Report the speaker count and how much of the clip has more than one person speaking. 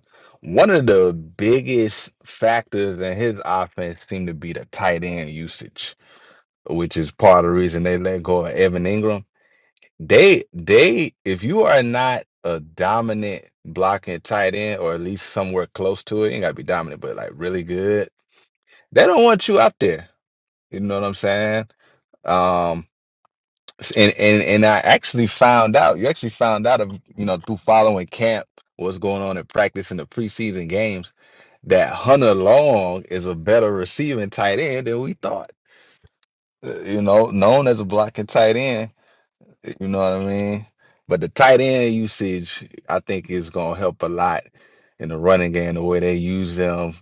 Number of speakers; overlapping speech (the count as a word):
one, no overlap